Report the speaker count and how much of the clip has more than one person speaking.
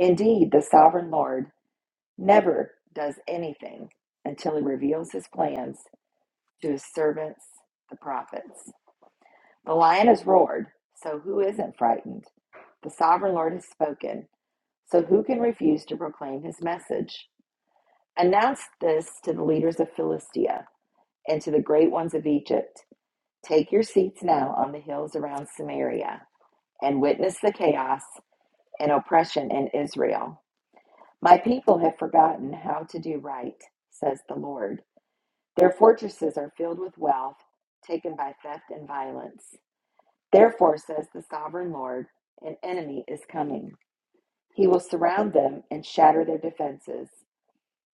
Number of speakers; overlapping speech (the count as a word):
one, no overlap